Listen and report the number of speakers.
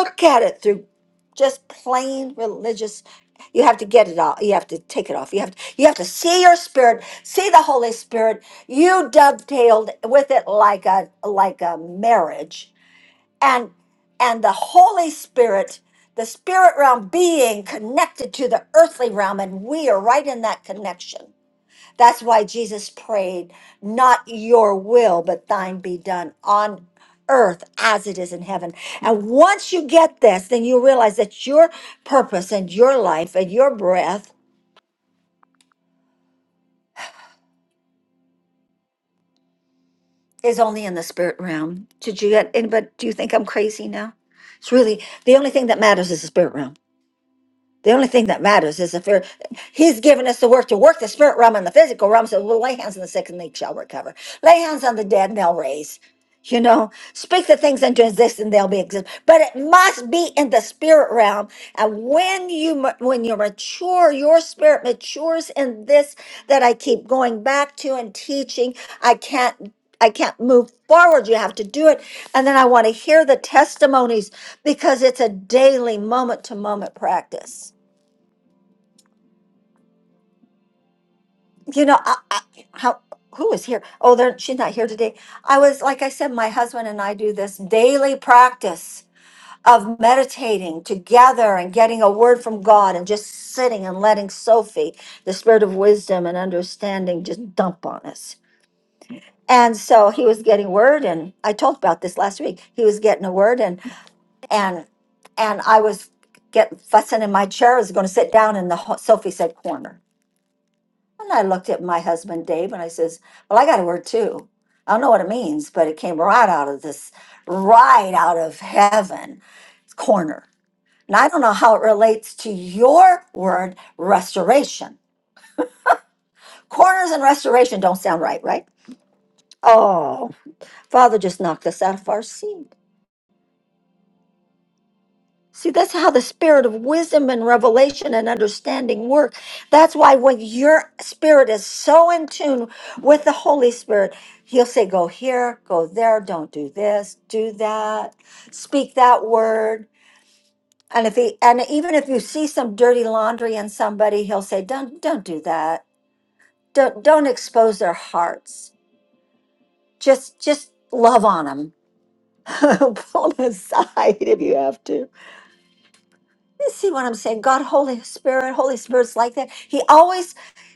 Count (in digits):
1